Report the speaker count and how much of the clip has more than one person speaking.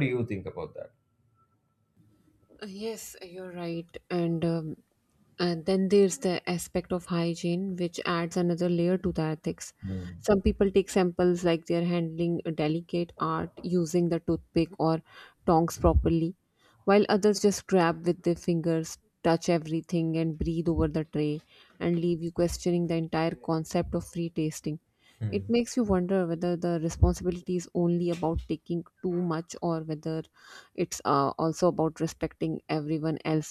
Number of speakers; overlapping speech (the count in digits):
2, under 1%